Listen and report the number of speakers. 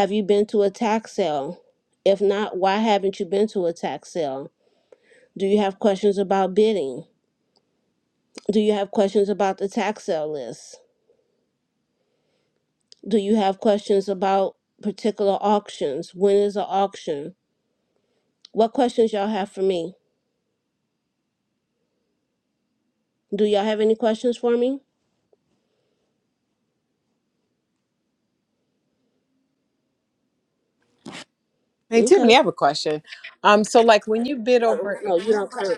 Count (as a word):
two